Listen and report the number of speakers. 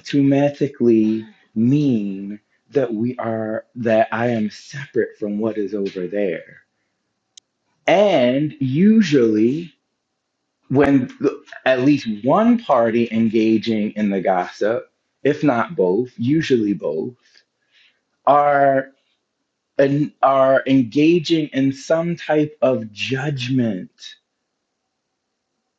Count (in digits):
1